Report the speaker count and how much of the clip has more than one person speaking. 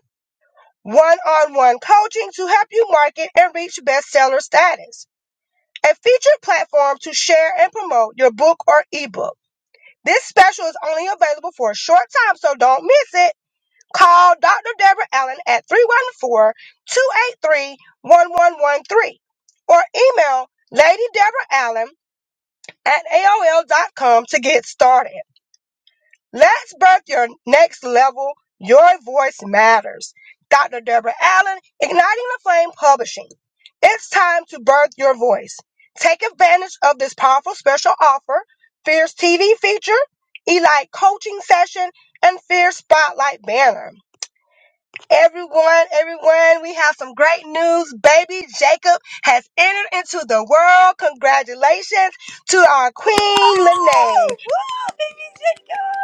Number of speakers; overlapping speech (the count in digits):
2, about 2%